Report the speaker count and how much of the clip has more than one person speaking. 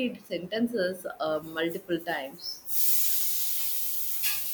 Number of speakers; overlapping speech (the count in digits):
1, no overlap